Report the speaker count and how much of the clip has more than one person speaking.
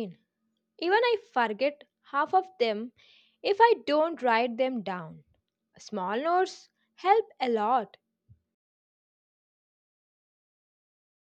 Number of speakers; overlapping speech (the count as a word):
one, no overlap